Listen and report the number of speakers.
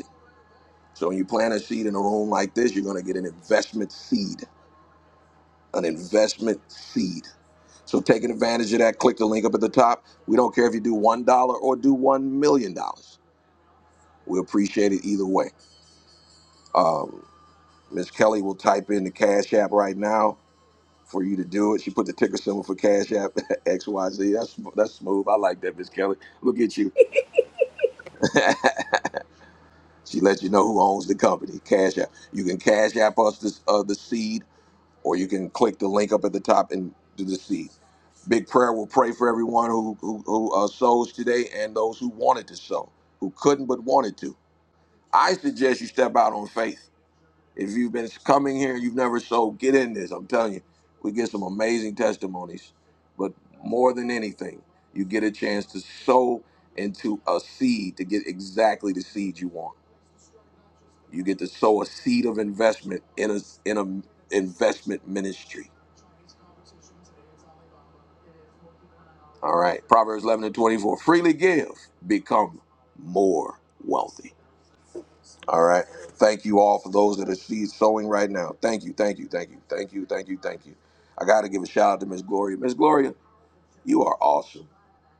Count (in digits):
1